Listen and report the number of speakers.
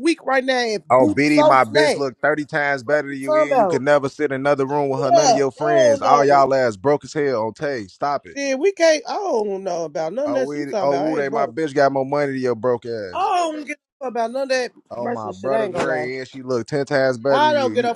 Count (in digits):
2